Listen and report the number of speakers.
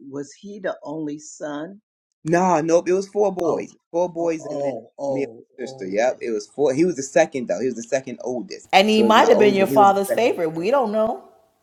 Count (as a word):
three